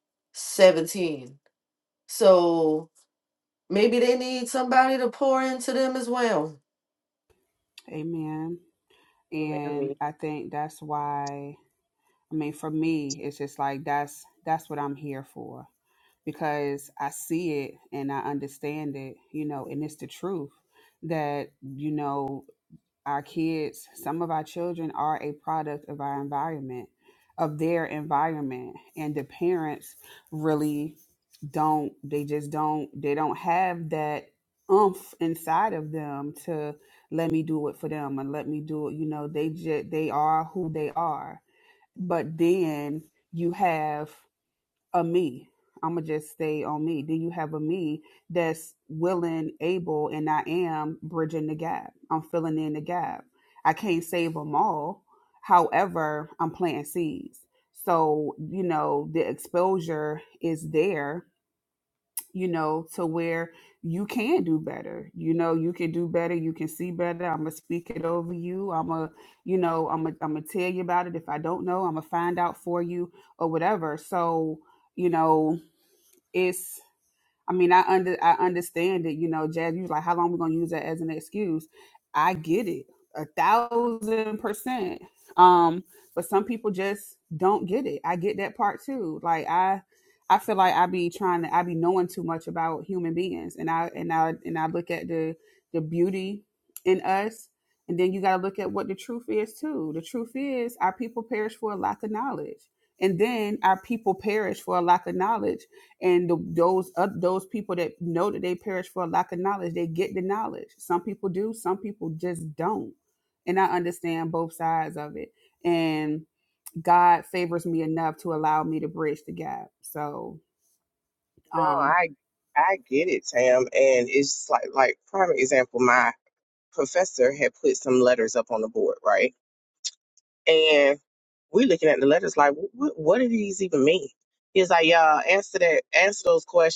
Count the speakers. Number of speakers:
3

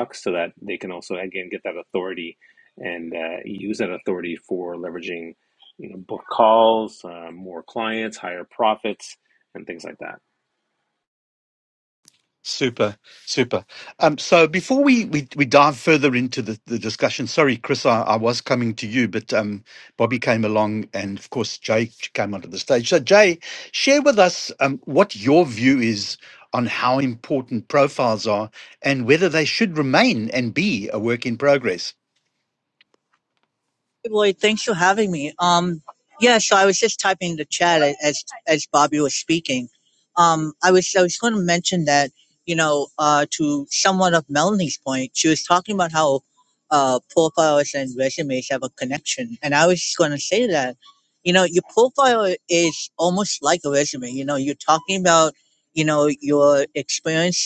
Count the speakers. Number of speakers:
3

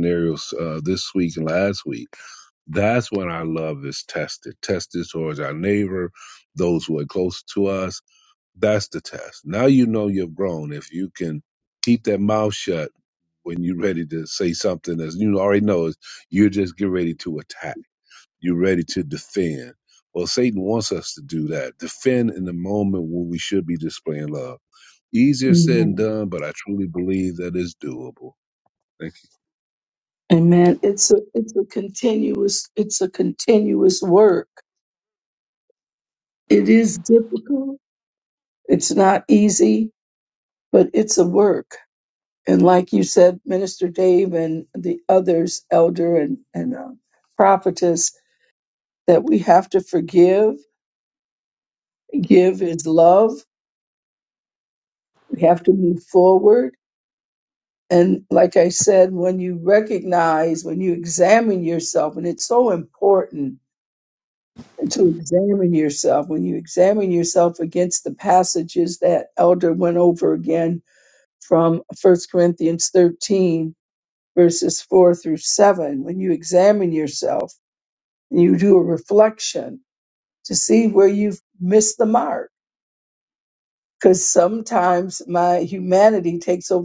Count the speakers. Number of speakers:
2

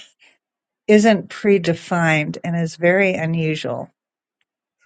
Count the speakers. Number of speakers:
1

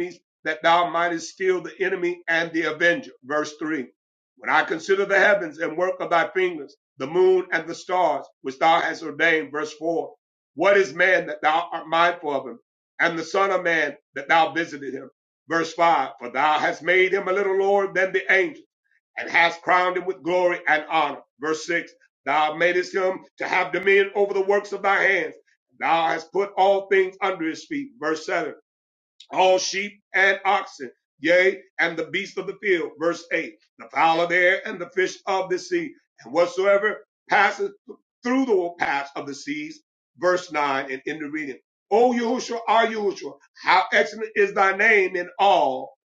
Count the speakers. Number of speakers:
1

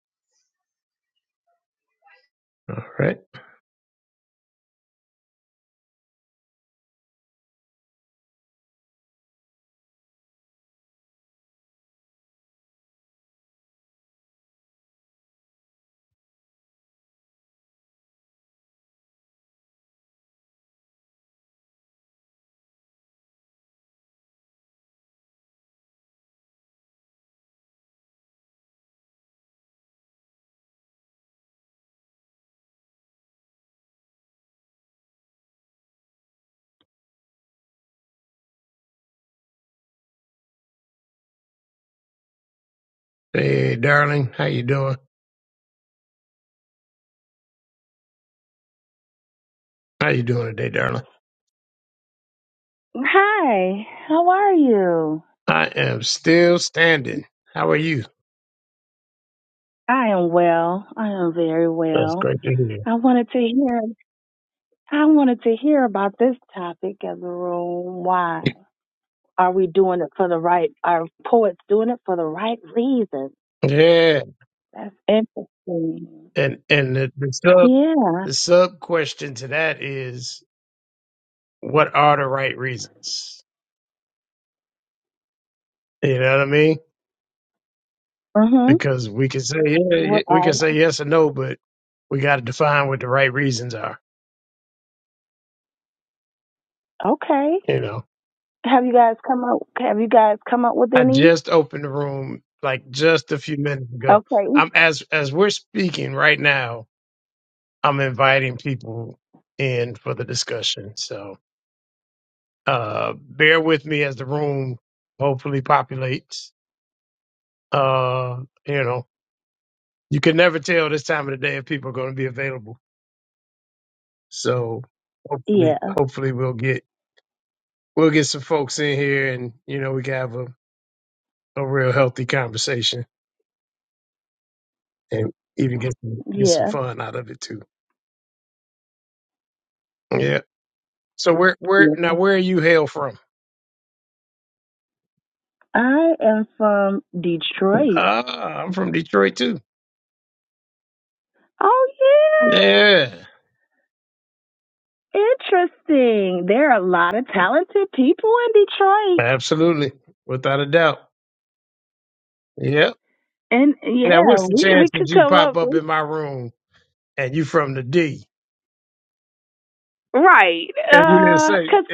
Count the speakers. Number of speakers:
2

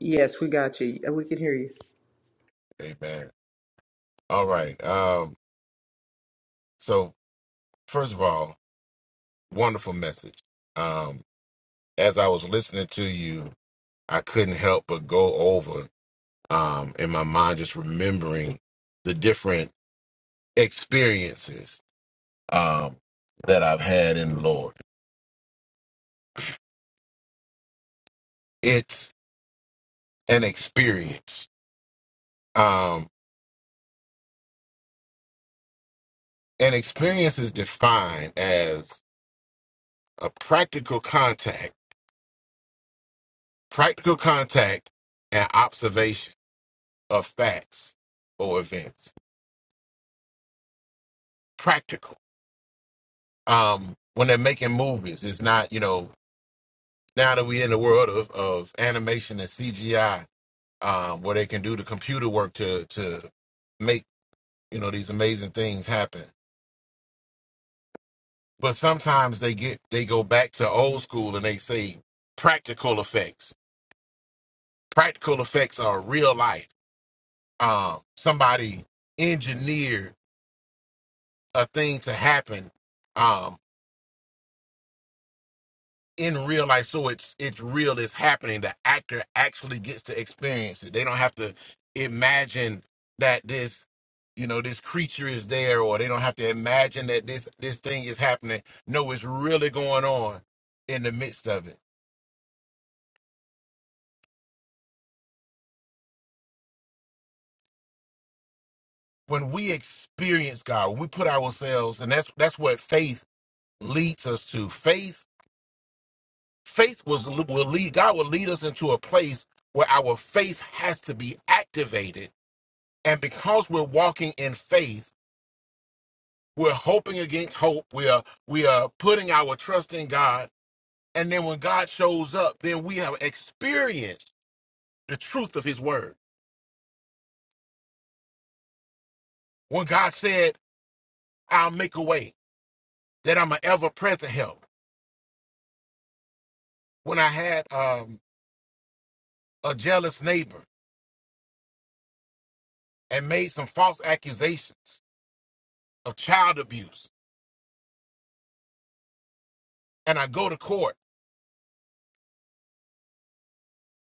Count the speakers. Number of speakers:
2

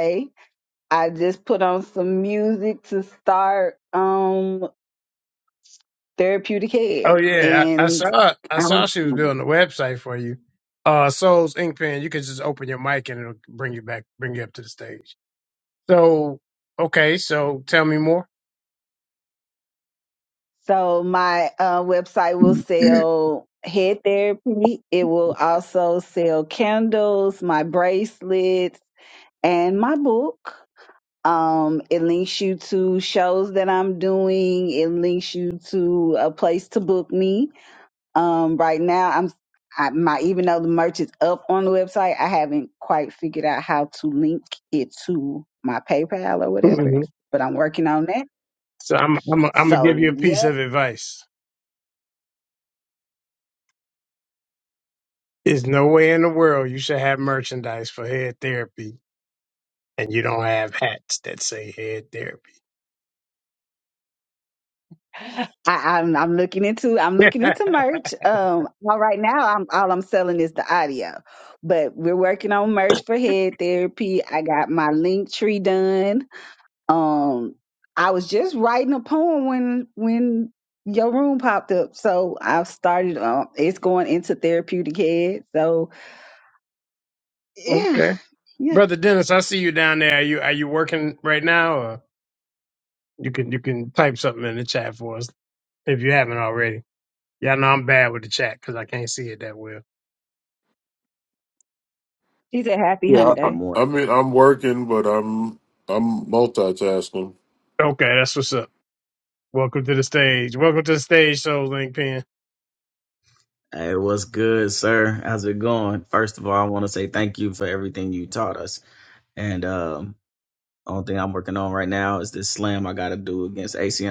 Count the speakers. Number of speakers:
4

